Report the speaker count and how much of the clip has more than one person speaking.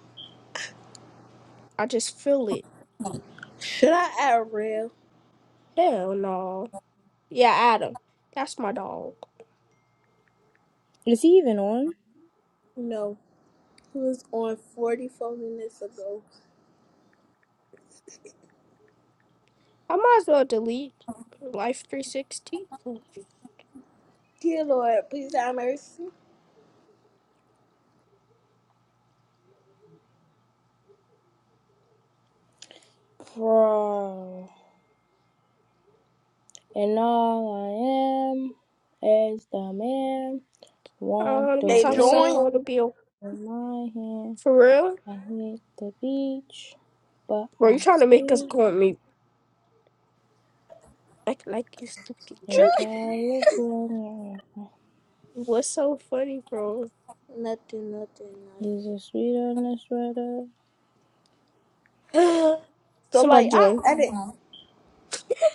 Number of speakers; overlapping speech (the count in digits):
3, about 4%